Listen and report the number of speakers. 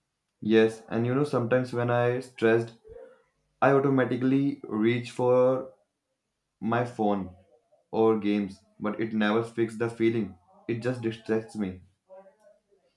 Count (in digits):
1